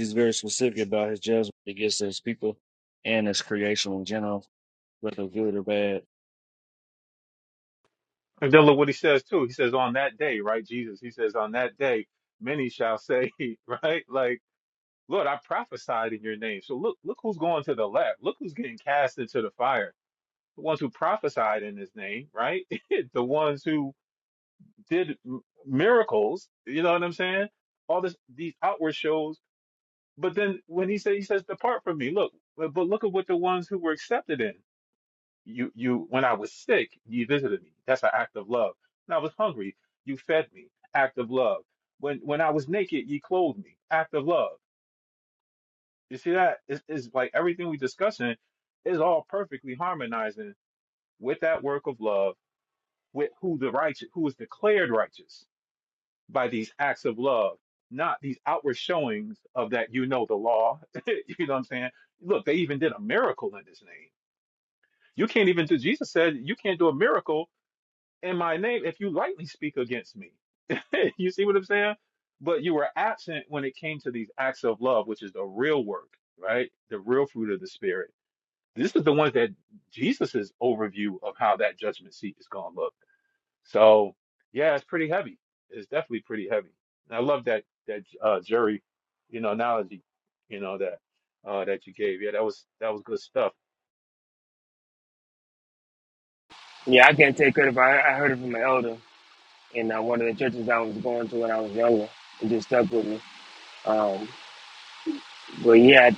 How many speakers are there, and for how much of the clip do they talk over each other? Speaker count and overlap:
3, no overlap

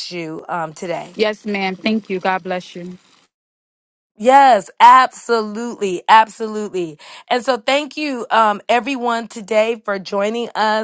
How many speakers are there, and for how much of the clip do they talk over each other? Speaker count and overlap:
2, no overlap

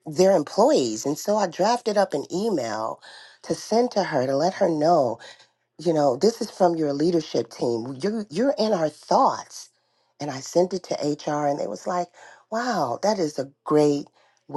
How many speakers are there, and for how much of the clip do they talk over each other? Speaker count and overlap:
1, no overlap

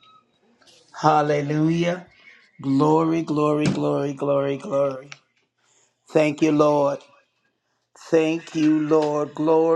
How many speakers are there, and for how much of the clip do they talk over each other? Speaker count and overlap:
1, no overlap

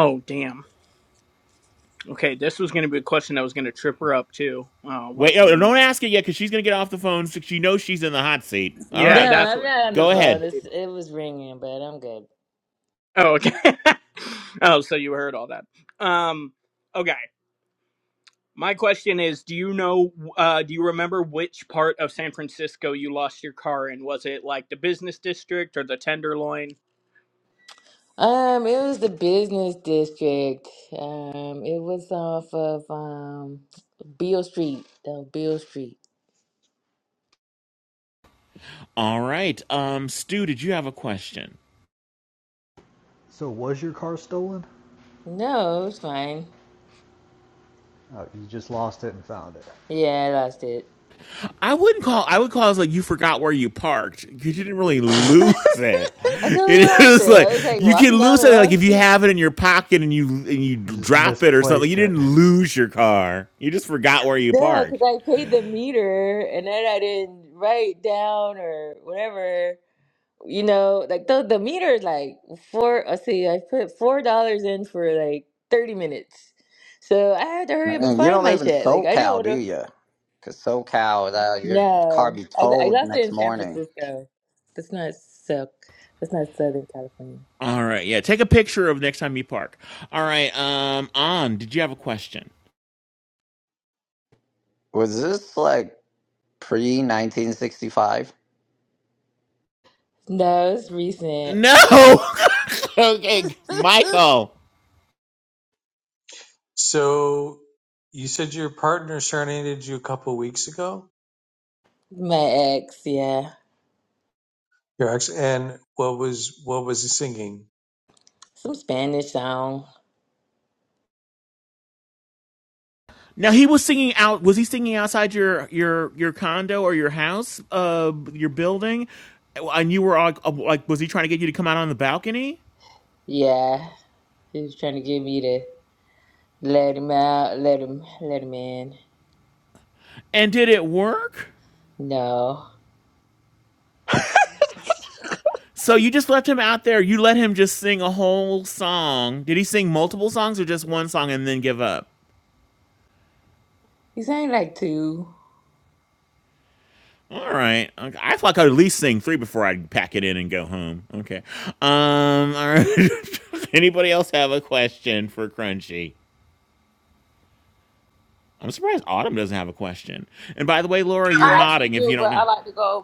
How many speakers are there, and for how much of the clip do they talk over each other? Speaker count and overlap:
7, about 7%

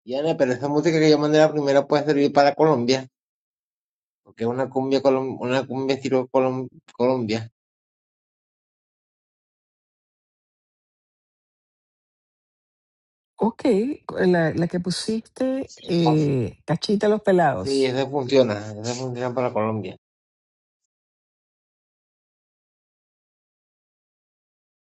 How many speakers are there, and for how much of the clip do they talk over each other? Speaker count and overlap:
2, about 1%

